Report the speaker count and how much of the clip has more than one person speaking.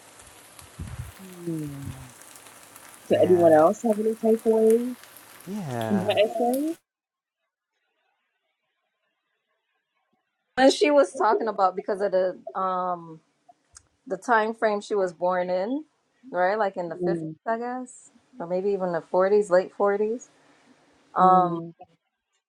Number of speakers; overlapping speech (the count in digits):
3, about 6%